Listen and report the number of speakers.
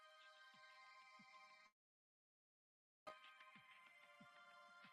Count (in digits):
0